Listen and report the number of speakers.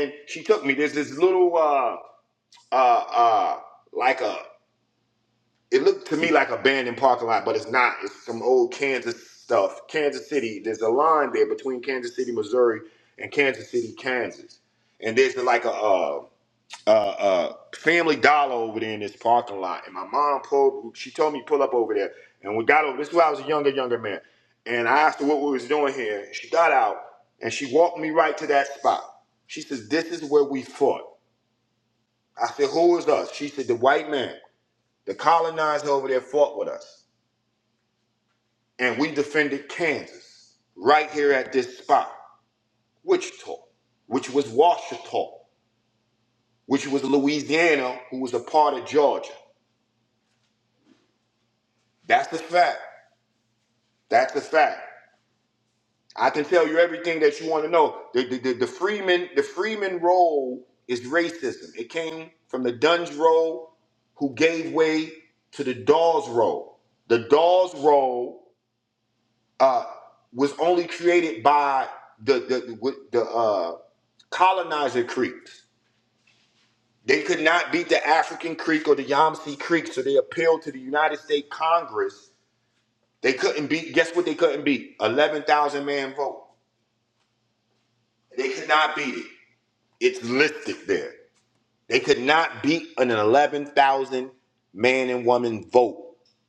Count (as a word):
one